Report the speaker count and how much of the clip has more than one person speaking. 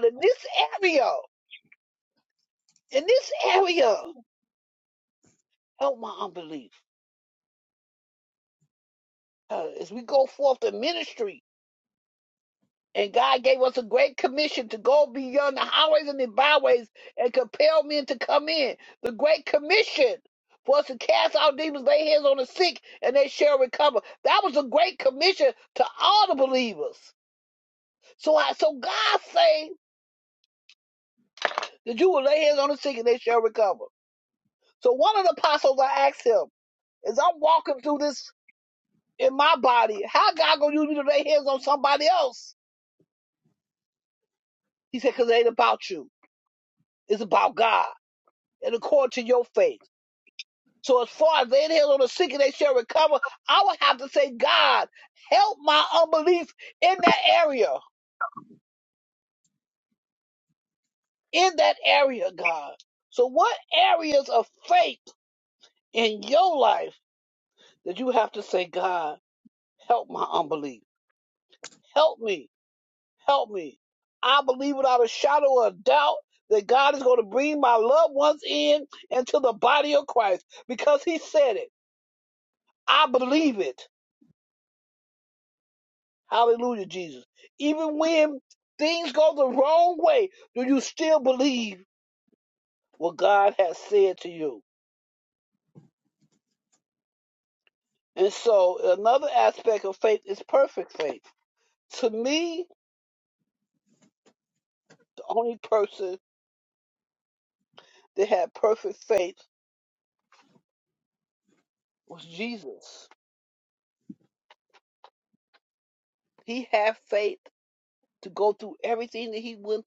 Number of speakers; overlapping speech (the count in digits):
1, no overlap